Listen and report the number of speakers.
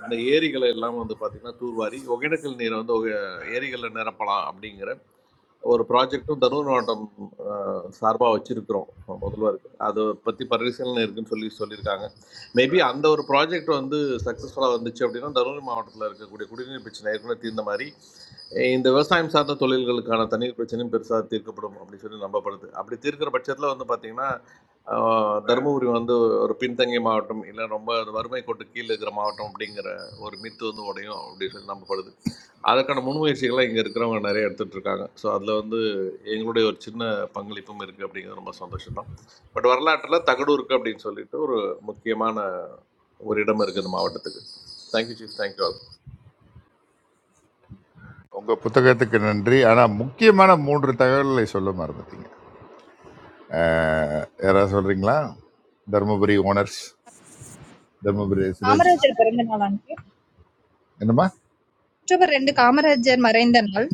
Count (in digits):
3